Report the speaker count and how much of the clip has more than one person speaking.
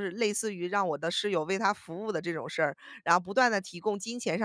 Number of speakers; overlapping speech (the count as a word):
one, no overlap